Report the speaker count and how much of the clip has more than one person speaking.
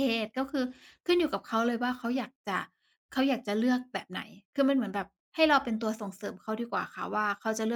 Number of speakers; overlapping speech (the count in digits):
1, no overlap